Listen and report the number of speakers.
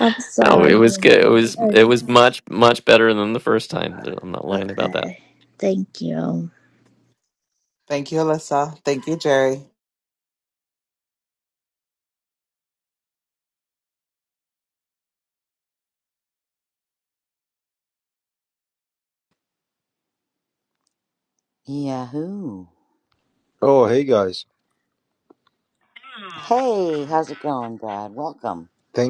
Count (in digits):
5